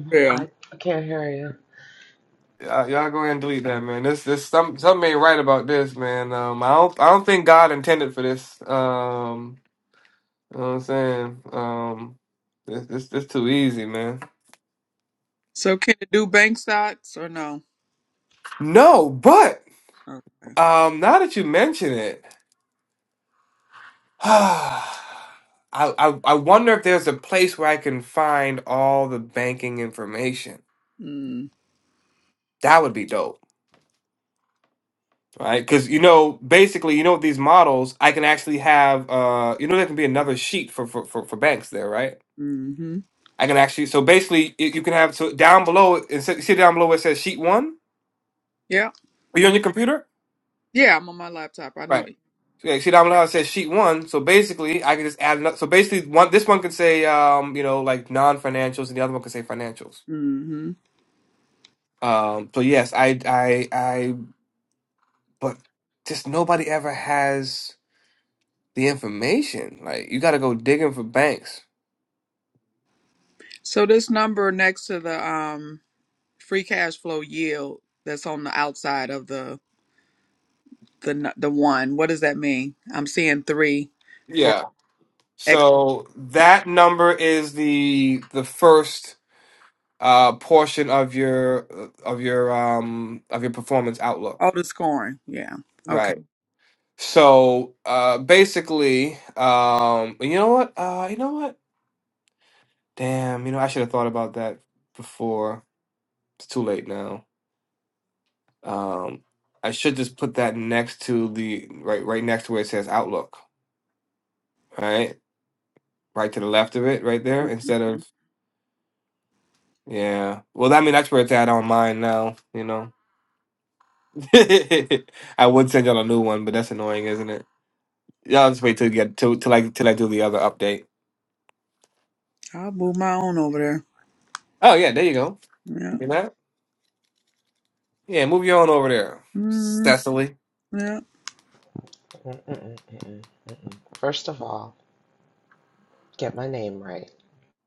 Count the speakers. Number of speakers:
3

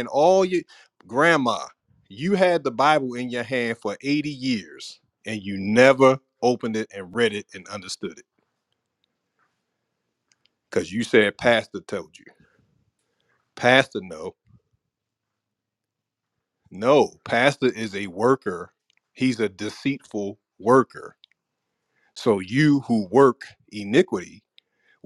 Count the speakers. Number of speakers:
1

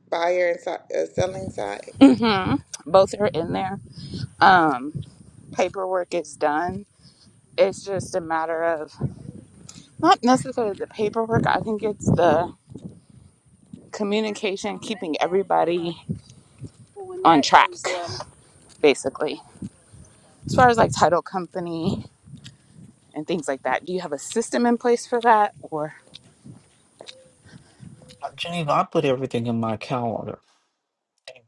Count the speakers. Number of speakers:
3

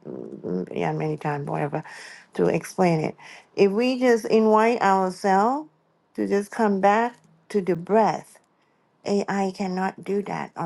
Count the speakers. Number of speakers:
1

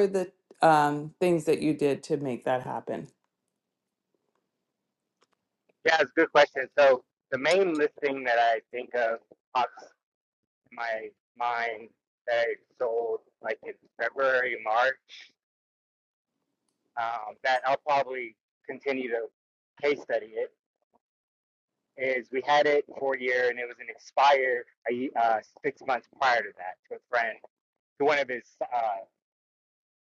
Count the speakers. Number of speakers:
2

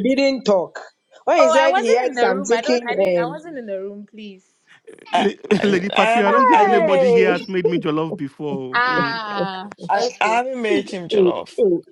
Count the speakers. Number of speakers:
4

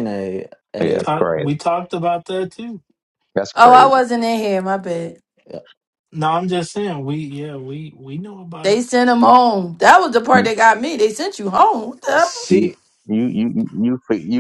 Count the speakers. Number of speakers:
4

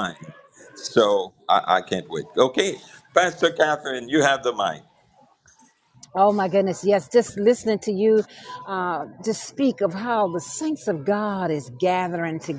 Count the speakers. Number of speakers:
2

